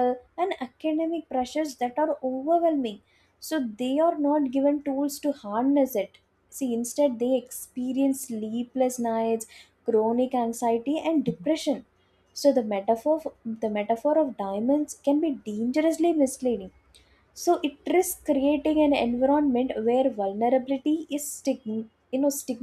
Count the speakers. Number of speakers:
1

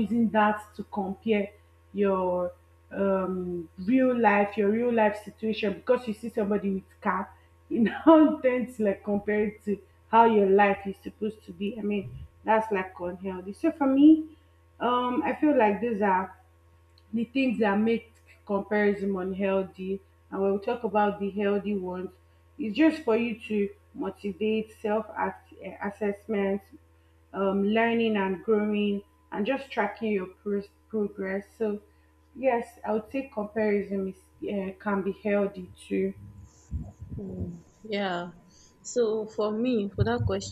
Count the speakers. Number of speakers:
2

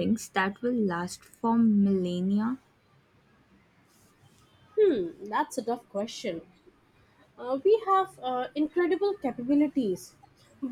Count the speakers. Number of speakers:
2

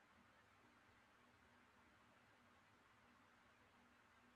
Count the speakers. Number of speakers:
0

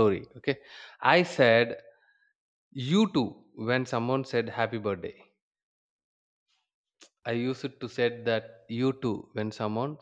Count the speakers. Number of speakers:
1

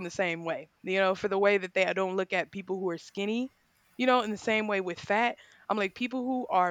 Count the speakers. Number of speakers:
1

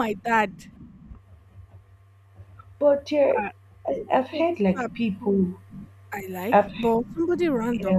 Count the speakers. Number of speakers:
2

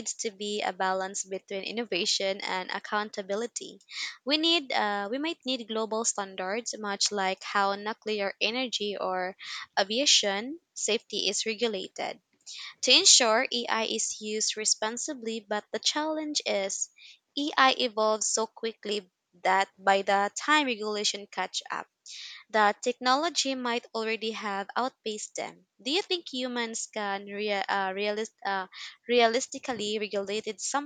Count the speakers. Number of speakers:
1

